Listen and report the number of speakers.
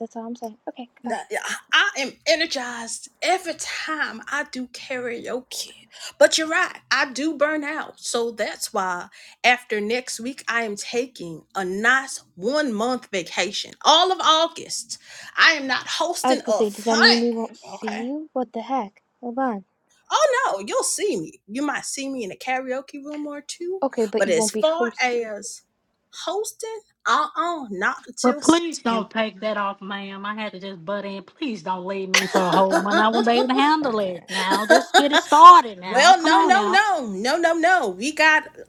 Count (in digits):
3